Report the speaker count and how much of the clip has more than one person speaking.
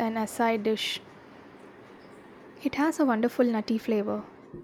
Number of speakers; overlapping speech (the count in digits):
1, no overlap